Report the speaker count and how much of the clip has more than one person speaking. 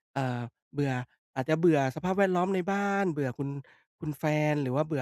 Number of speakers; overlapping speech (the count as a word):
one, no overlap